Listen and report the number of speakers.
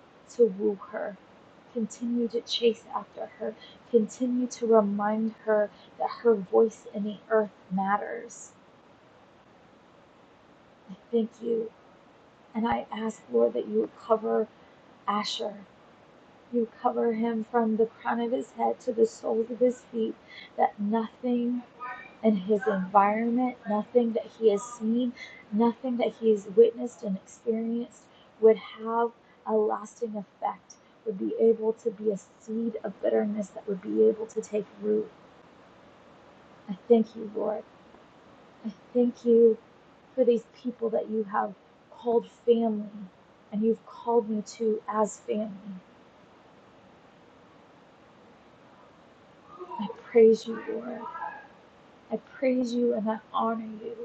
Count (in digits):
1